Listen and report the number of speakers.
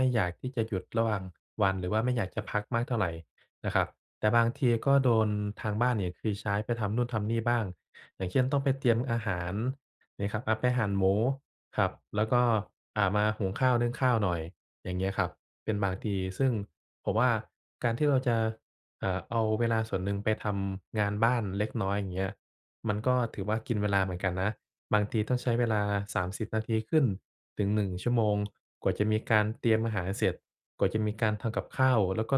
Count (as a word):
one